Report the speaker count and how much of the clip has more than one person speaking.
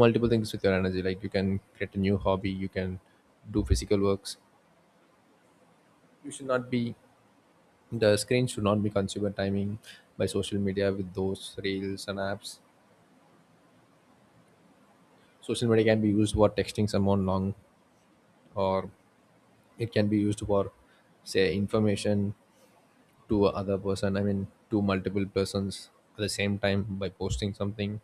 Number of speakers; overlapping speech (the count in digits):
1, no overlap